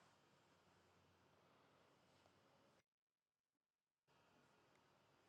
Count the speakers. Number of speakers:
0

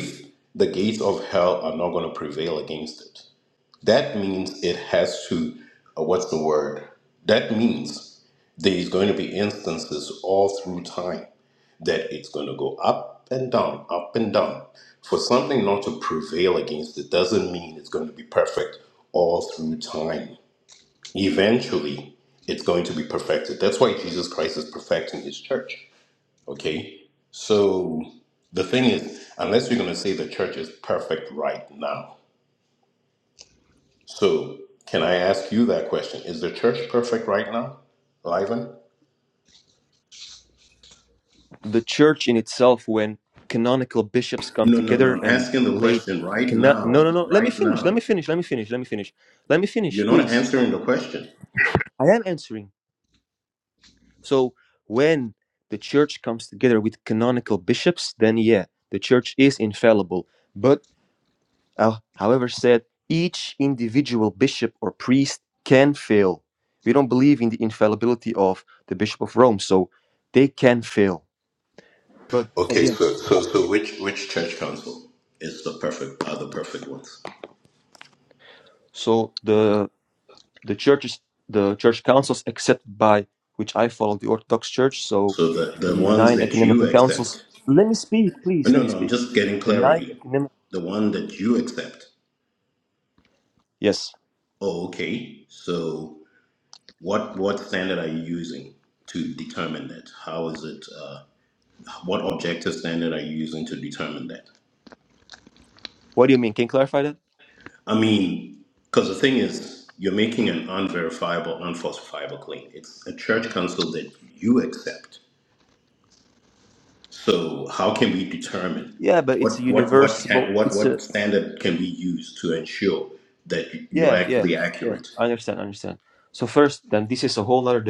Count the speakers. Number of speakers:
2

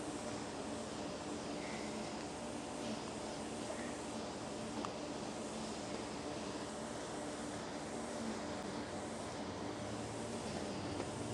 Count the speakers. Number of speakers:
0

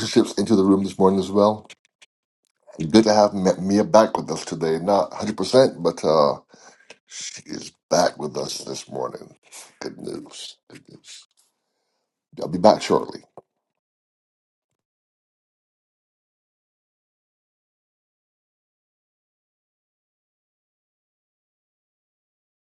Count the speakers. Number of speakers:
1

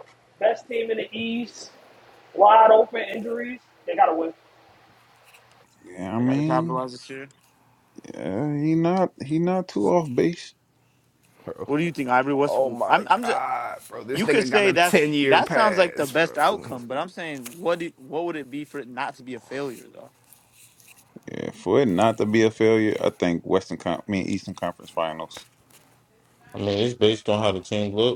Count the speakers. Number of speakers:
5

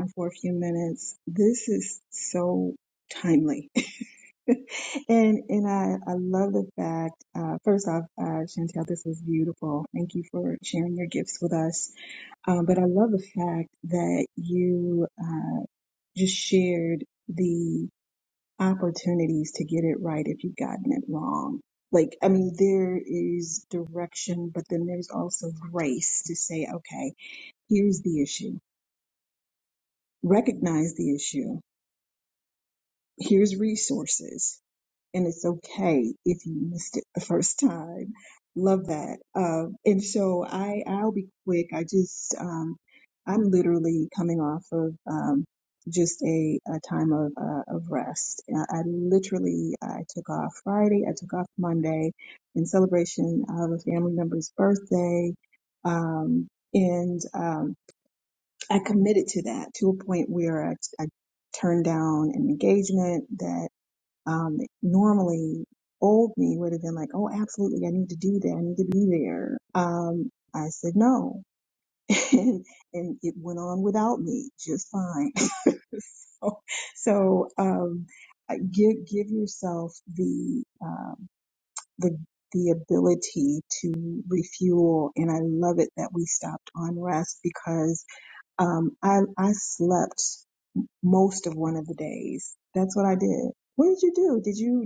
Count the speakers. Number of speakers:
1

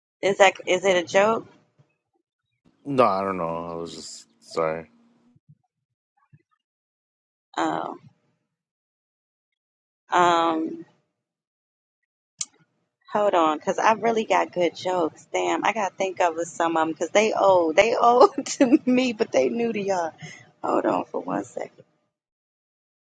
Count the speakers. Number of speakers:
2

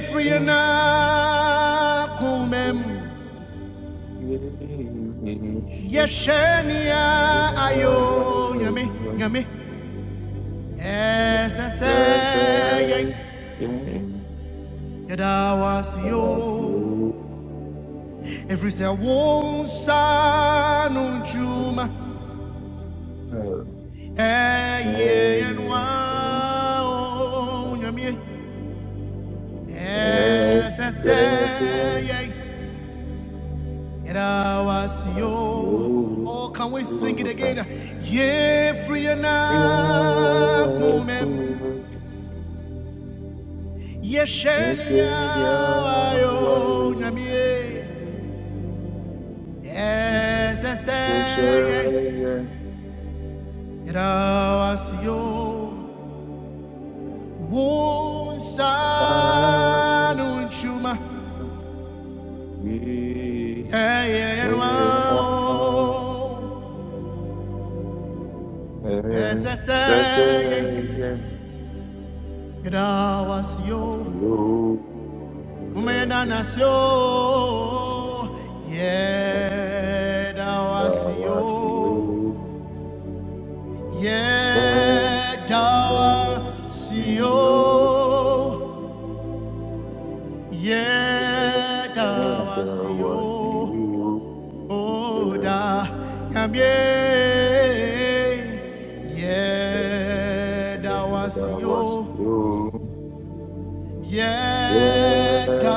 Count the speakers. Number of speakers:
2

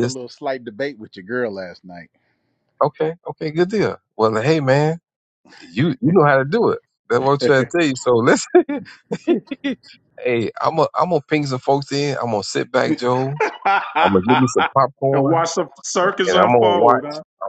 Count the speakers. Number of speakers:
3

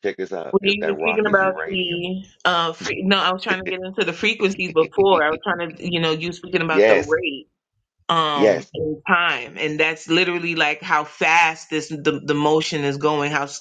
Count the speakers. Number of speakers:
2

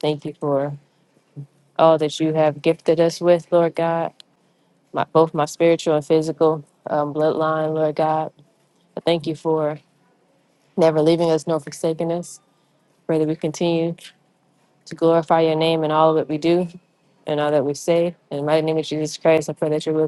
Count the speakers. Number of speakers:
1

